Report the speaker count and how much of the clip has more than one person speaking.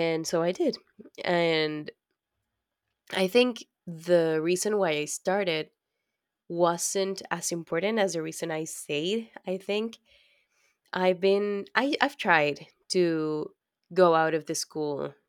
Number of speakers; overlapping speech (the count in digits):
1, no overlap